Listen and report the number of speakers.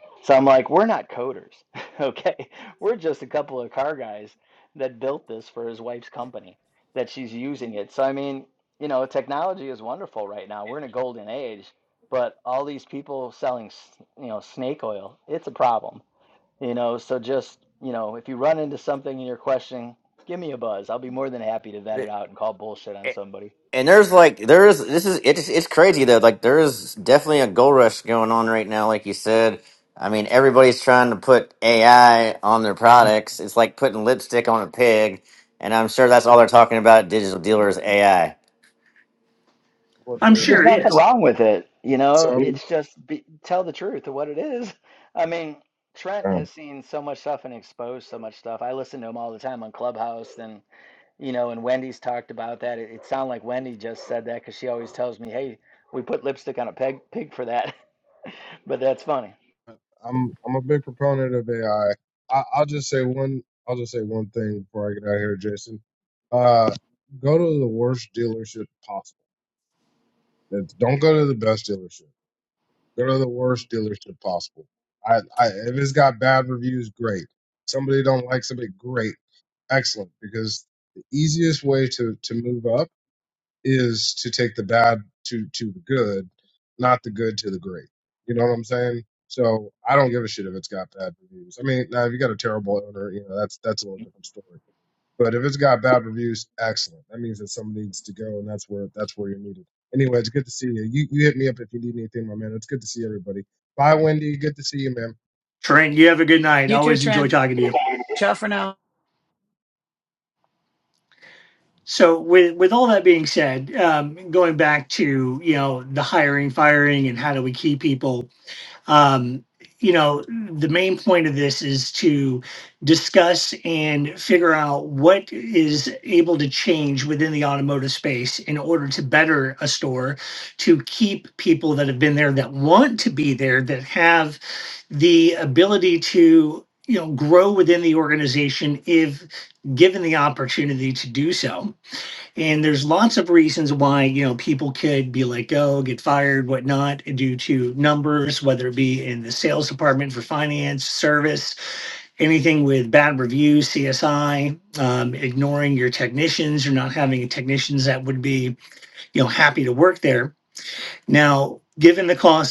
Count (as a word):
five